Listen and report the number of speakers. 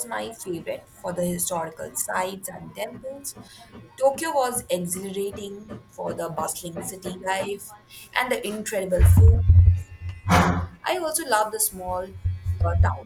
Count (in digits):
1